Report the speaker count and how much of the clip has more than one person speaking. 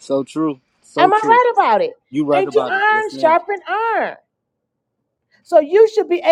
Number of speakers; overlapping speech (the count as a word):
two, about 23%